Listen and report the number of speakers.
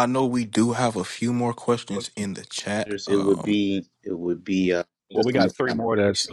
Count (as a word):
three